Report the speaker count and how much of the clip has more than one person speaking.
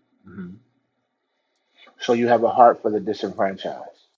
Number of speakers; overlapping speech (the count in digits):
1, no overlap